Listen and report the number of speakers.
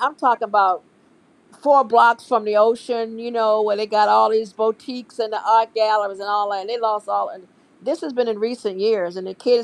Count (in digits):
1